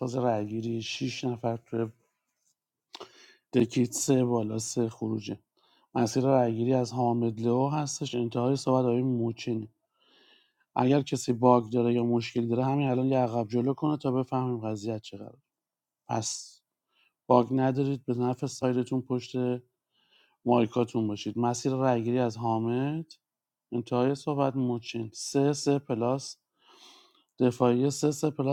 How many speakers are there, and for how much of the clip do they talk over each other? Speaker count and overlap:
1, no overlap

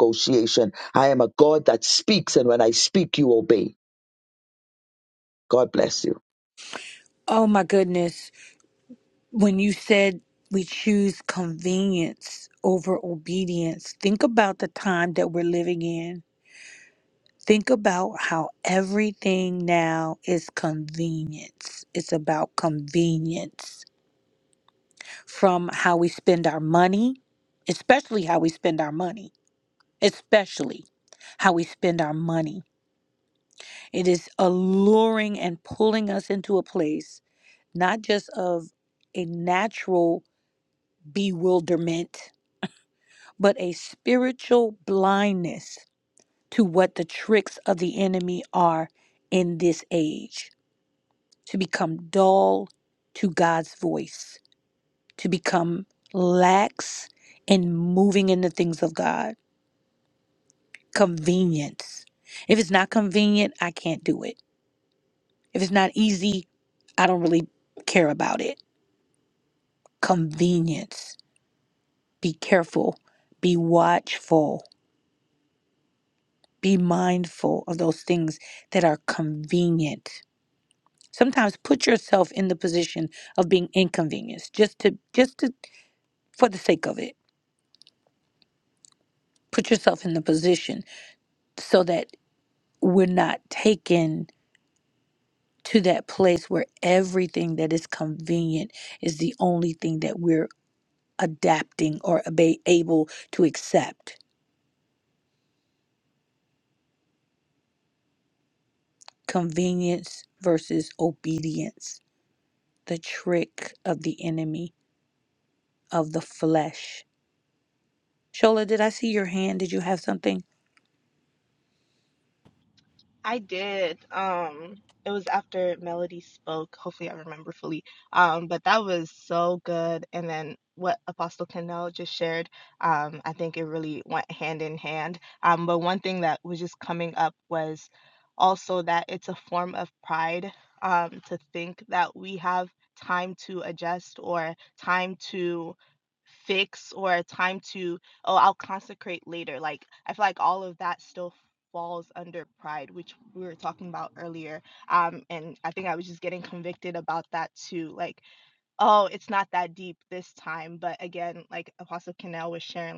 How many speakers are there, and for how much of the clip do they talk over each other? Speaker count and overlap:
3, no overlap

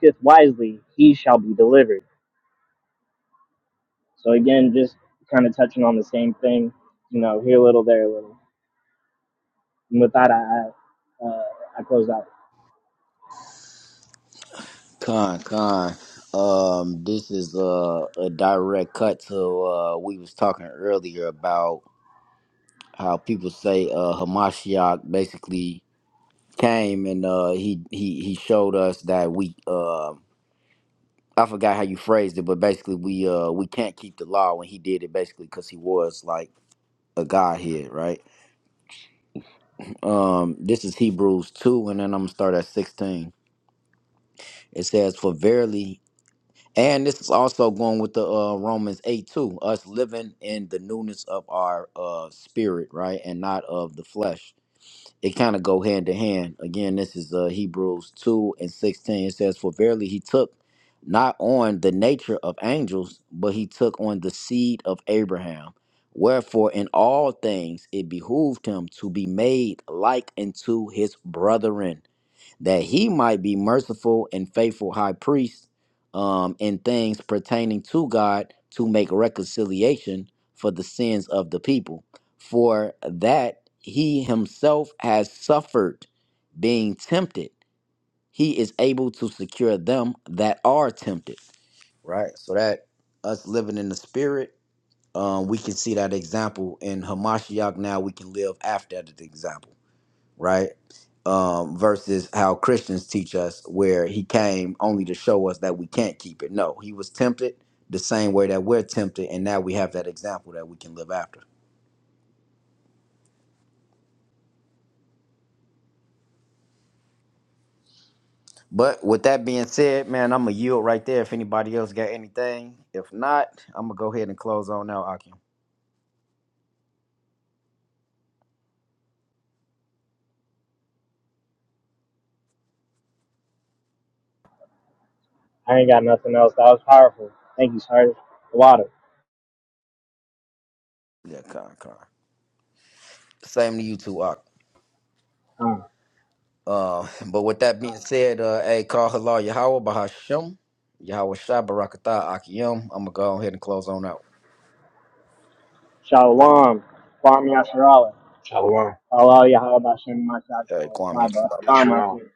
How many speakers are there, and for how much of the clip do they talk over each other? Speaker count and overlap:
3, about 1%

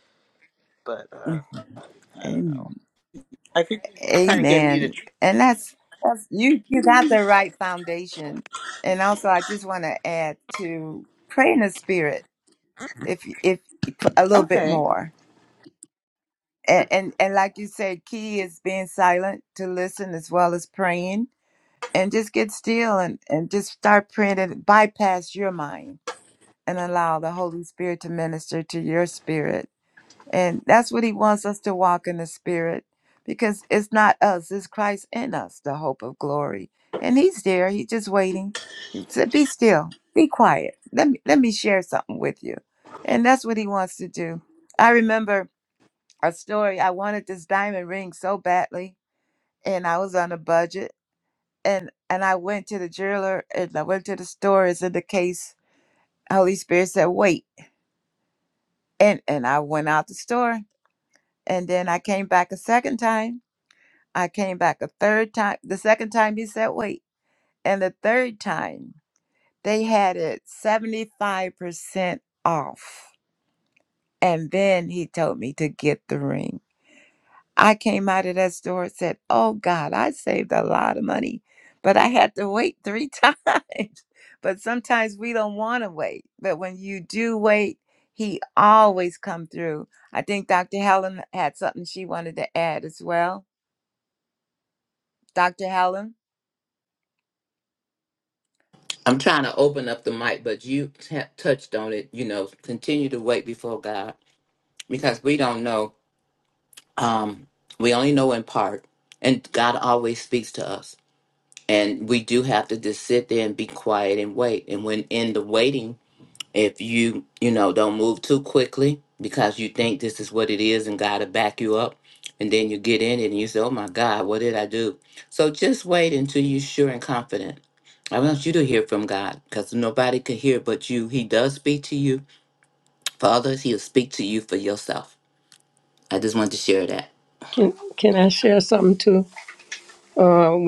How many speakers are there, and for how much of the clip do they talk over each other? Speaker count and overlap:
4, about 1%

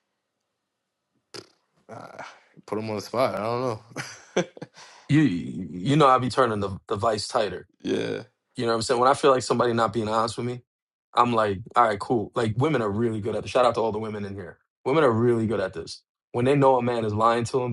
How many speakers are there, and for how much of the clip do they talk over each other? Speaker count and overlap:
2, no overlap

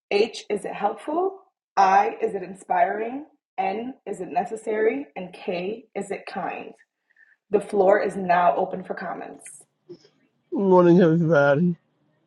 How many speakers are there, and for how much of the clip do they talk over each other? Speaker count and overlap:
2, no overlap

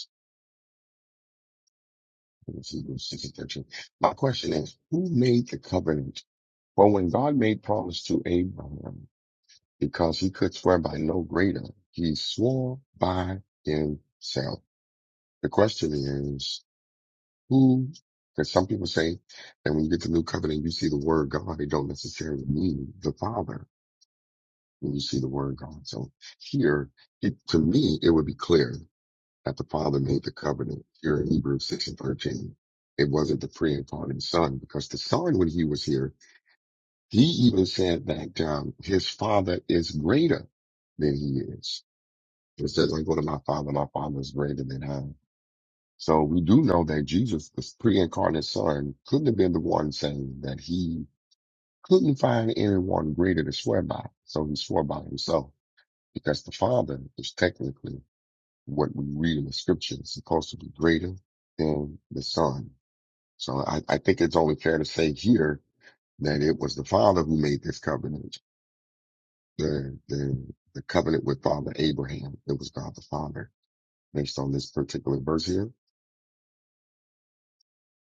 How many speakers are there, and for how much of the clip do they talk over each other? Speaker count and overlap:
1, no overlap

